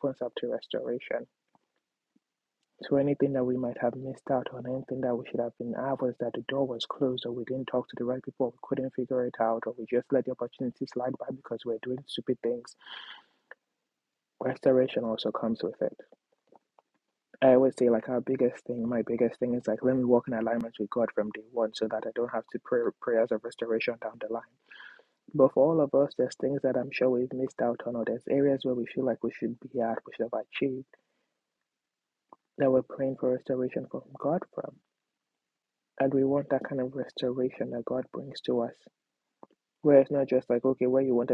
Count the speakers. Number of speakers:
one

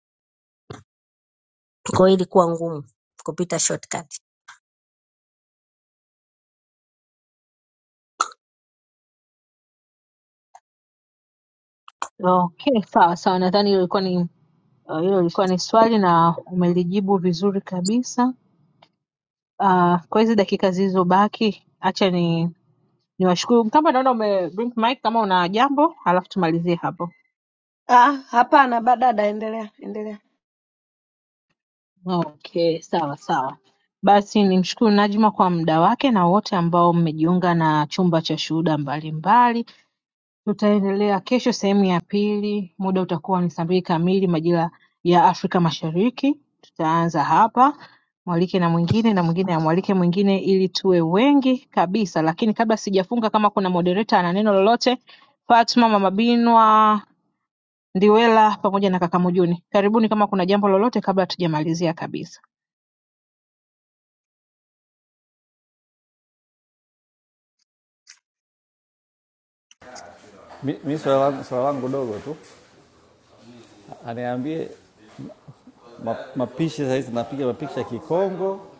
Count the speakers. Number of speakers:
four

